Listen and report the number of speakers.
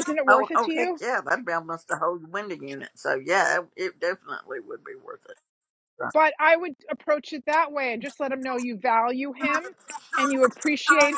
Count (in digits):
2